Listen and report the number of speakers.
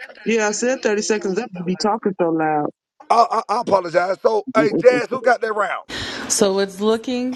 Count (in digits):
3